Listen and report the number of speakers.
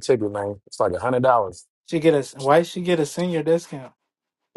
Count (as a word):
two